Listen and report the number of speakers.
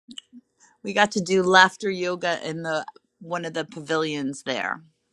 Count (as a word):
one